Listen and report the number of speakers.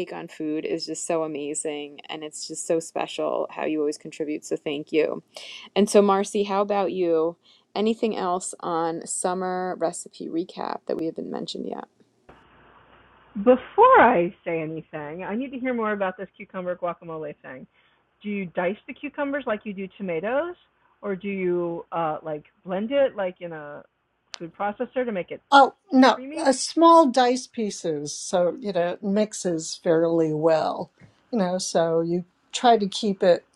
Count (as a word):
three